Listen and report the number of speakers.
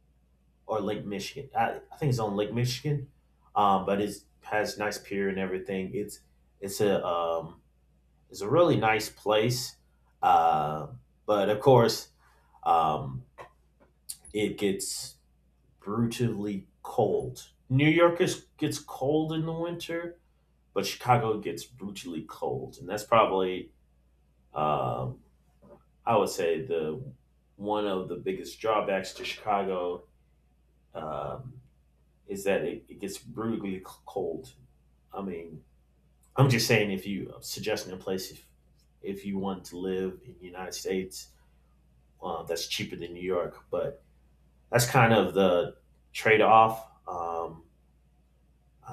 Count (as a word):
one